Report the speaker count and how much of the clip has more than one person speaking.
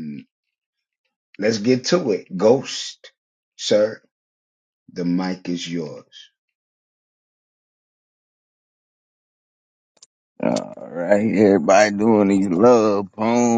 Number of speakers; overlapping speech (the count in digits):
2, no overlap